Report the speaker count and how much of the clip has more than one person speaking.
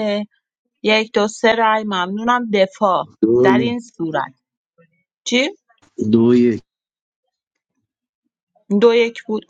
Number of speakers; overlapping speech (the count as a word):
two, about 3%